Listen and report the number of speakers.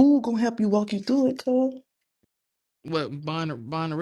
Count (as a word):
two